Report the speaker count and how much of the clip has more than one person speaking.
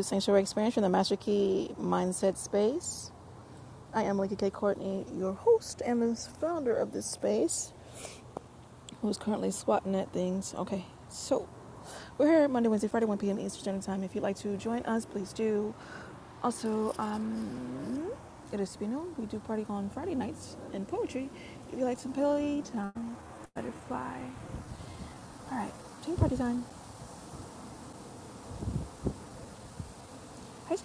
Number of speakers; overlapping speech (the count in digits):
1, no overlap